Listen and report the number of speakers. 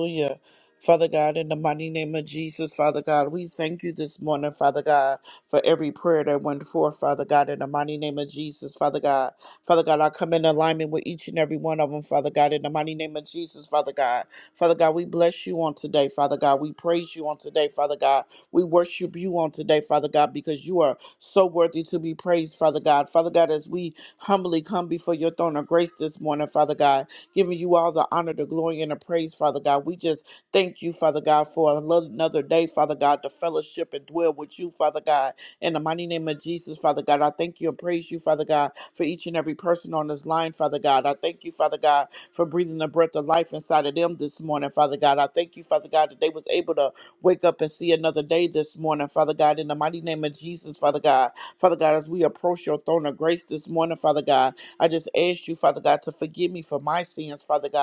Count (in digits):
1